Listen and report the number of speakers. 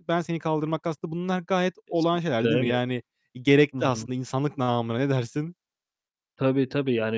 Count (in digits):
2